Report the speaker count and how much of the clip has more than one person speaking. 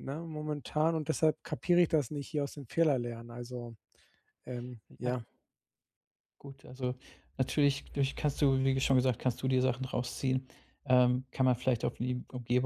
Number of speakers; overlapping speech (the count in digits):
2, about 1%